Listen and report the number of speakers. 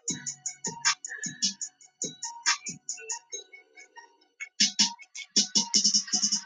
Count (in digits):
0